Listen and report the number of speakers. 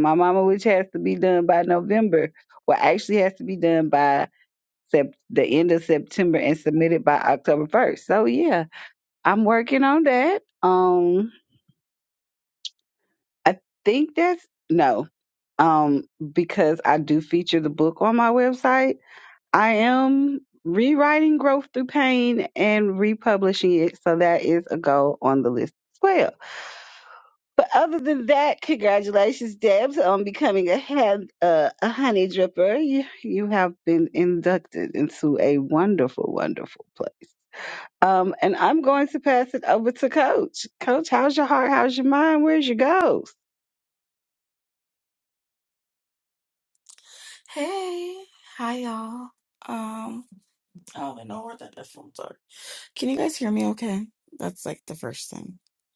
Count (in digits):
2